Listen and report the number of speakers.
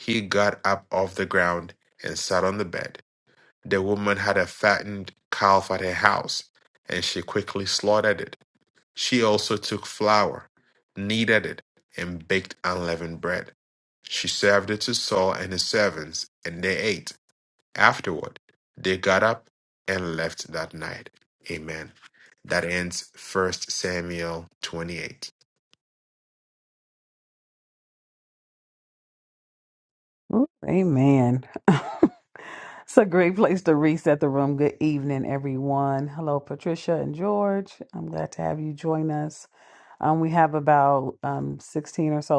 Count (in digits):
2